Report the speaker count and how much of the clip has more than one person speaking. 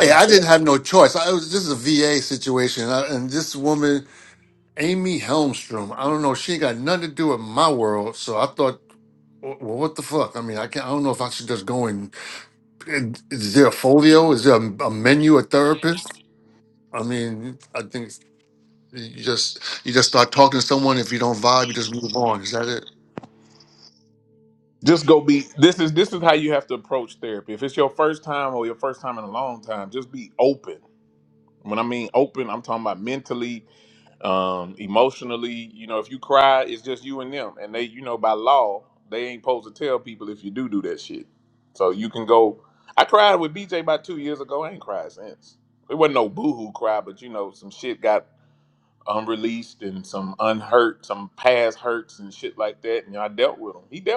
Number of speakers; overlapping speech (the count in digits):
2, about 1%